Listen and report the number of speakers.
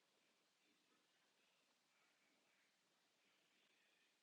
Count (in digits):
0